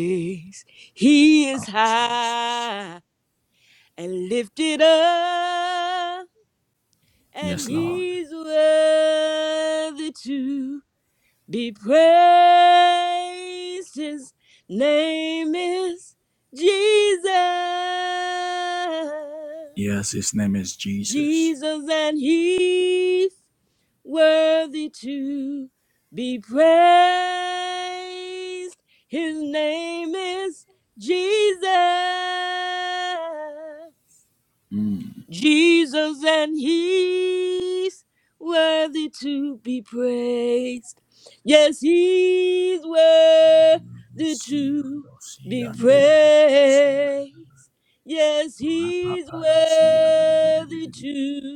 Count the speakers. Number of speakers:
2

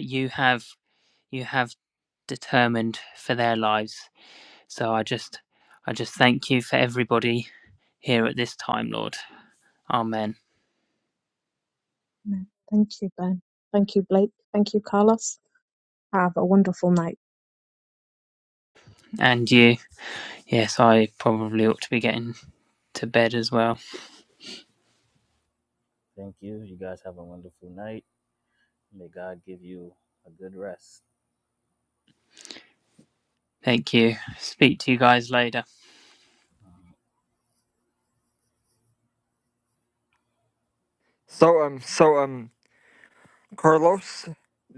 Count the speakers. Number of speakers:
4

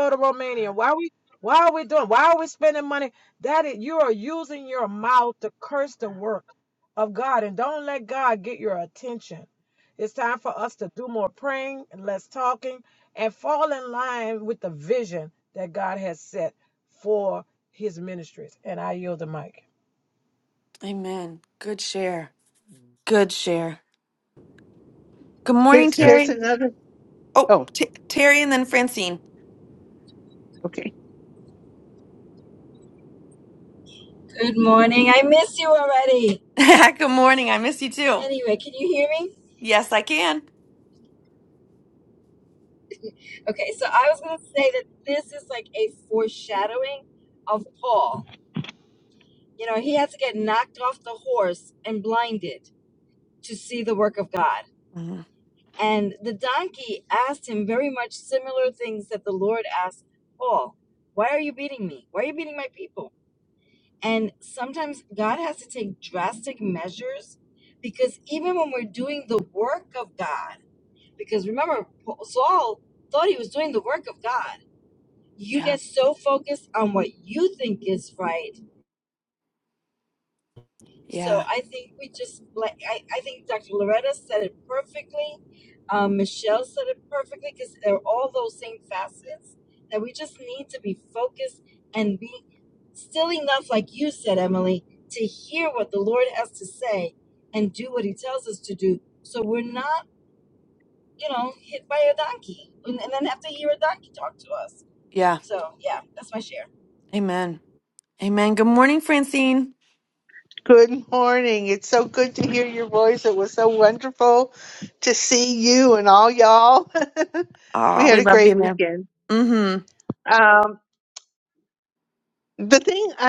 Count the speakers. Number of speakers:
4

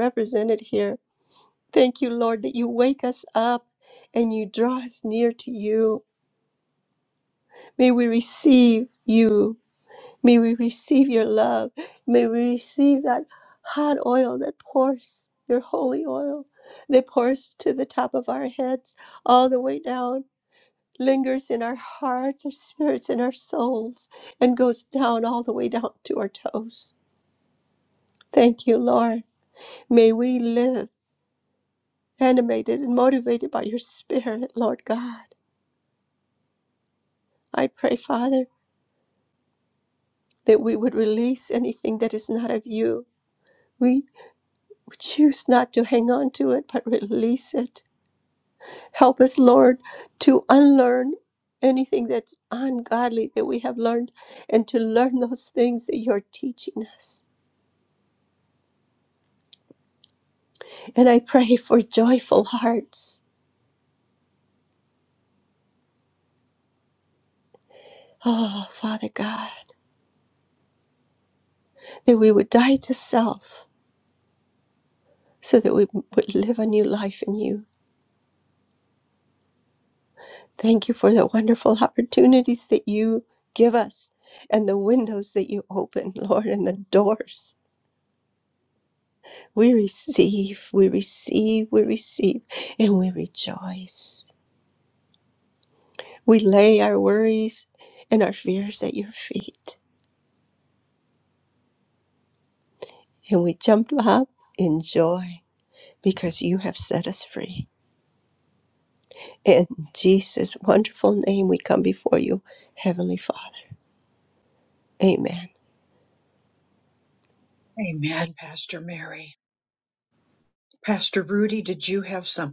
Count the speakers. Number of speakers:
2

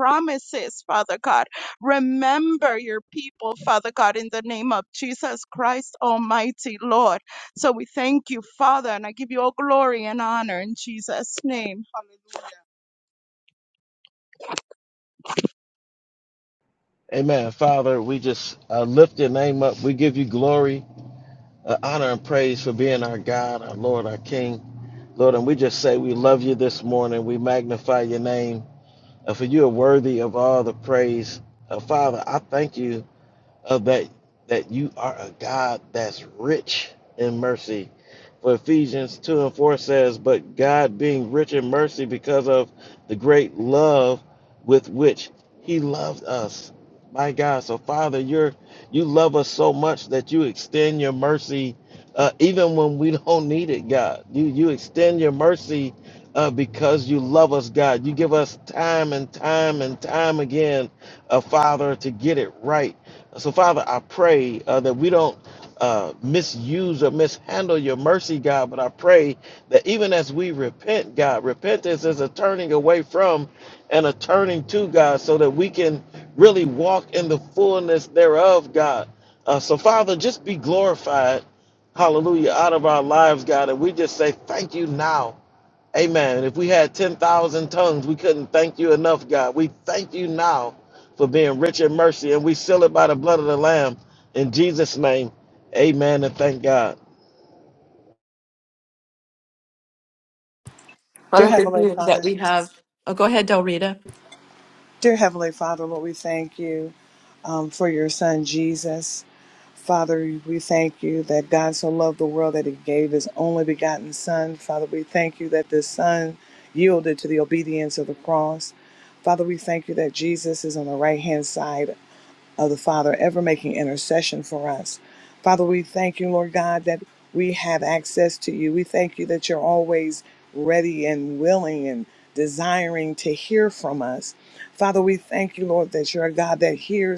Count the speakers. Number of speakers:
4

